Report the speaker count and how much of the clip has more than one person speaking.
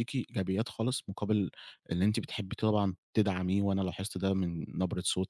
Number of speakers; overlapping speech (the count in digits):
1, no overlap